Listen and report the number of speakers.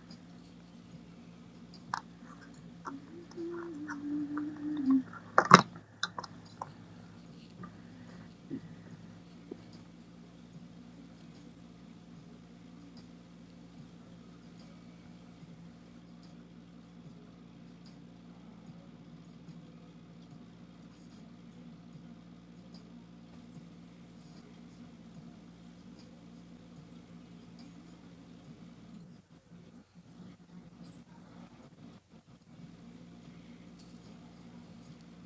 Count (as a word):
zero